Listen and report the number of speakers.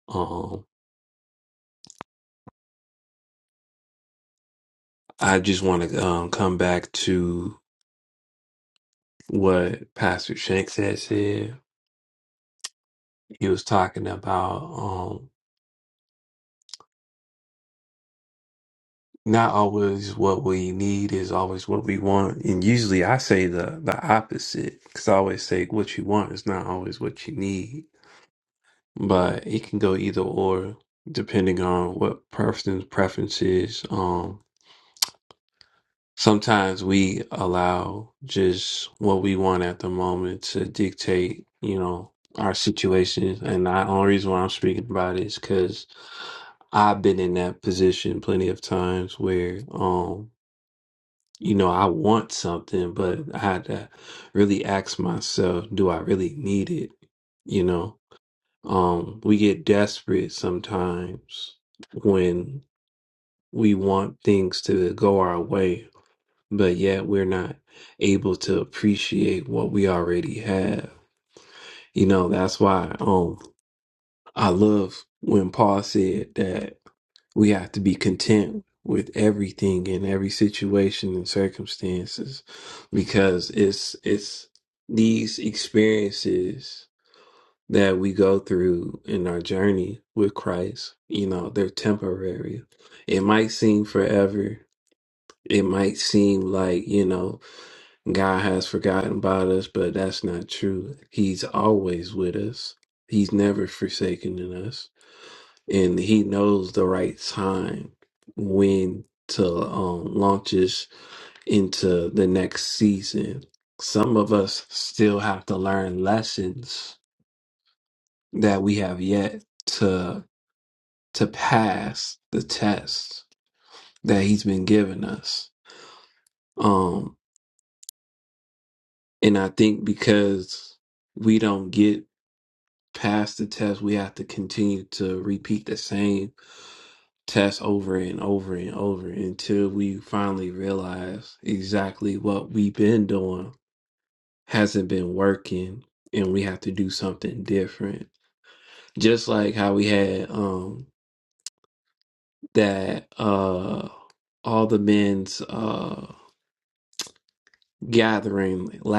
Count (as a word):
one